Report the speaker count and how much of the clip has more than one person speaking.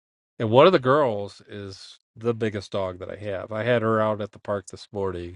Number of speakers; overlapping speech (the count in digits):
1, no overlap